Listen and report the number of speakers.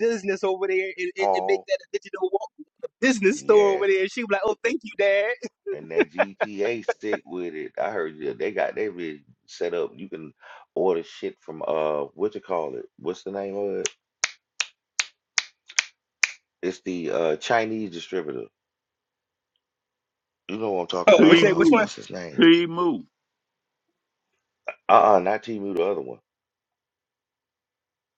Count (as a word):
three